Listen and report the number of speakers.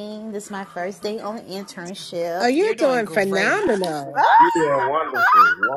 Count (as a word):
three